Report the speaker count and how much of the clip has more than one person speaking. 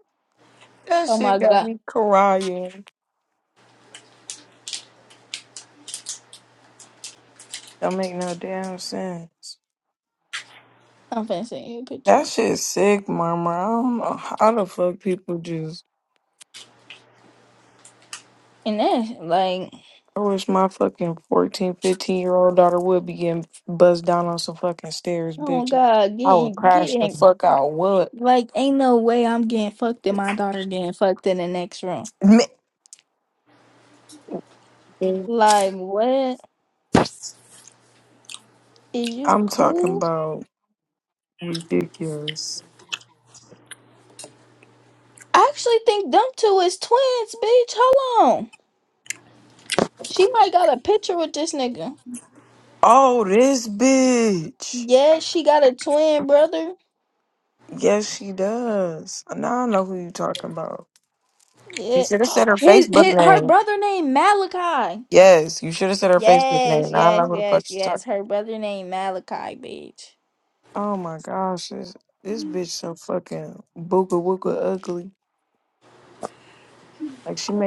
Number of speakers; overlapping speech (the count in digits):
2, about 8%